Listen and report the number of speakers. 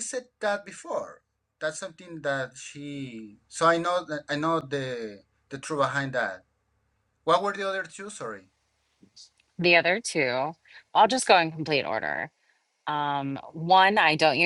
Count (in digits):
2